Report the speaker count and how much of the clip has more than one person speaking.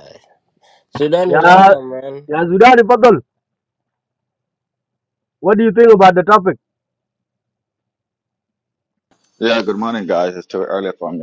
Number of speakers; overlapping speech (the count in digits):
3, about 1%